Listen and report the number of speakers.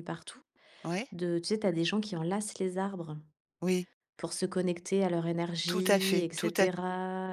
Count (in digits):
2